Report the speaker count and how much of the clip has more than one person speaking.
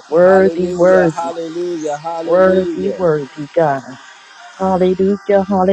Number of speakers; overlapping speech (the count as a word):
two, about 32%